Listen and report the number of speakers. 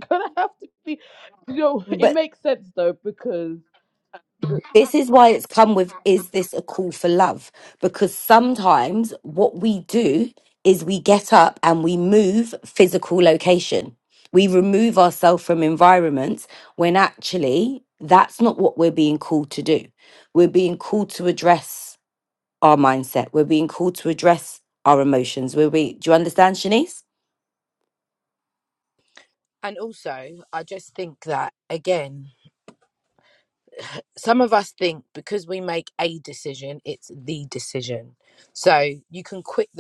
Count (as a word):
three